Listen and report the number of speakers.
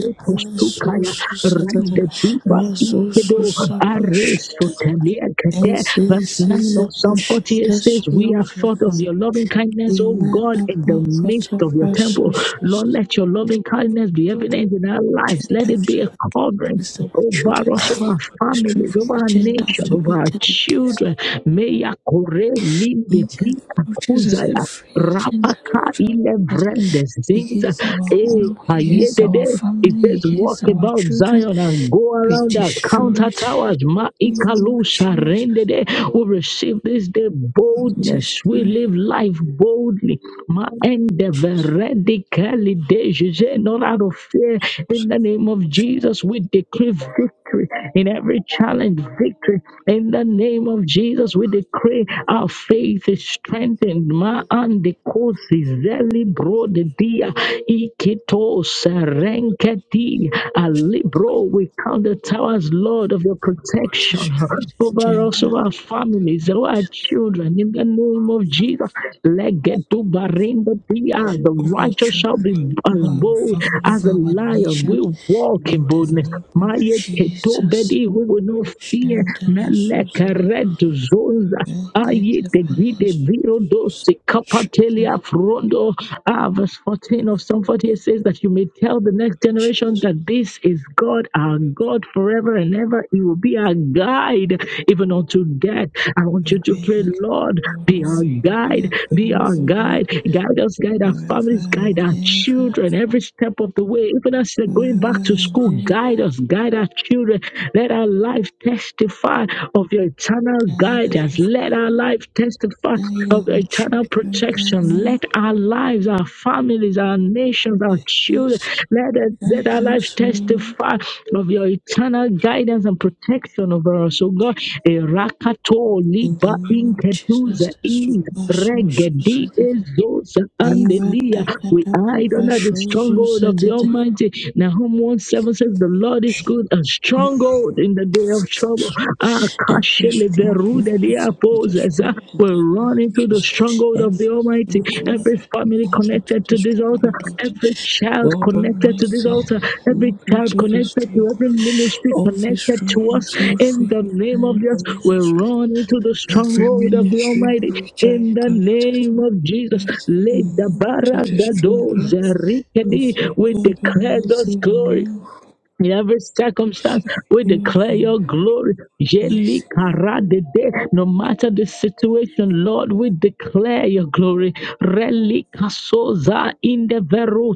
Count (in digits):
2